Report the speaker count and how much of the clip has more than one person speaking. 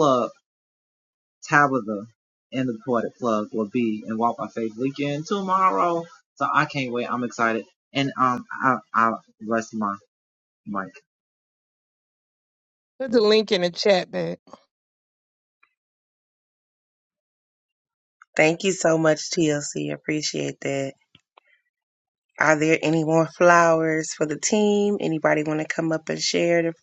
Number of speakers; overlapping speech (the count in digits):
3, no overlap